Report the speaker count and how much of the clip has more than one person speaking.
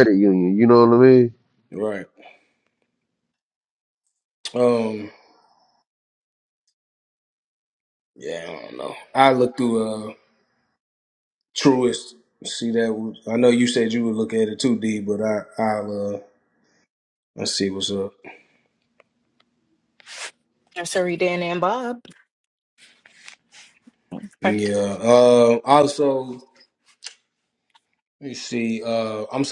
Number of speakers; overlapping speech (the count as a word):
three, about 1%